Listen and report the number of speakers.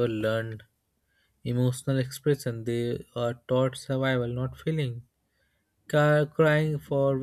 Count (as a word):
one